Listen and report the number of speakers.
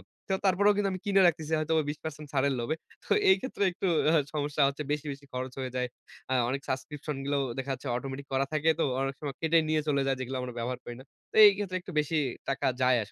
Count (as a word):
one